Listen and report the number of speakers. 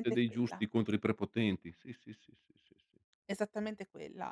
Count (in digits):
2